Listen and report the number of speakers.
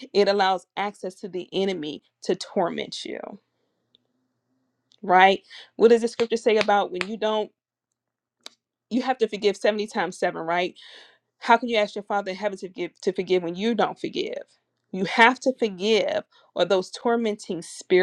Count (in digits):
1